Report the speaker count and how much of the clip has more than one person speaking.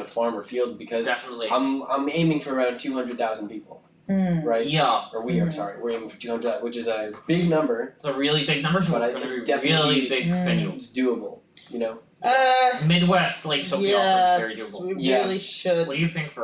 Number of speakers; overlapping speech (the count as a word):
three, about 25%